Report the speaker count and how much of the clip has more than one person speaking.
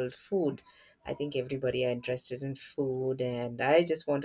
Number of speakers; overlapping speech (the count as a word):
one, no overlap